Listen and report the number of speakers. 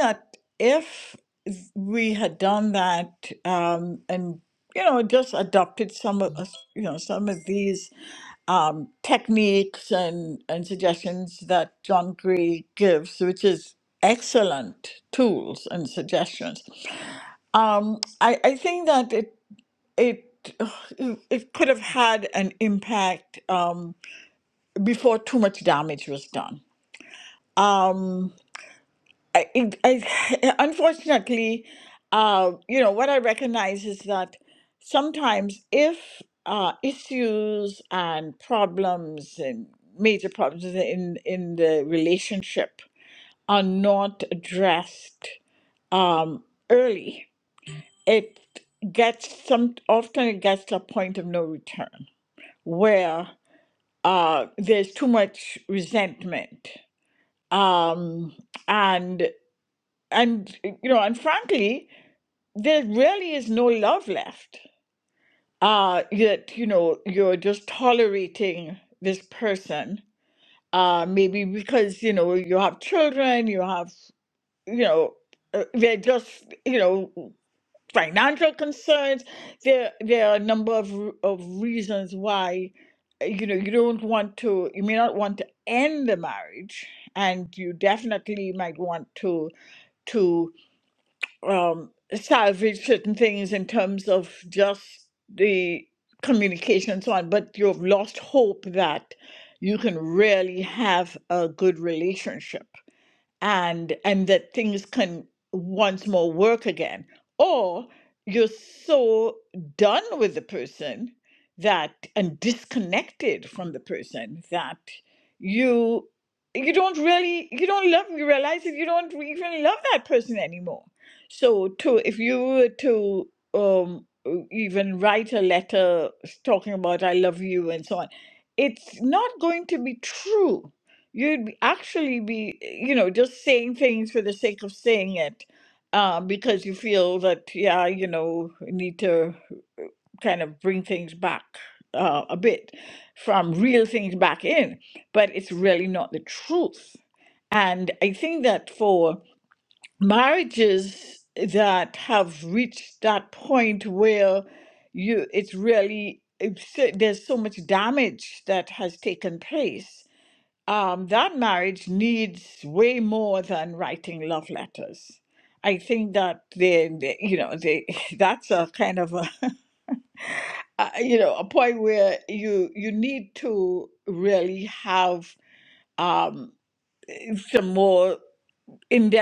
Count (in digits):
1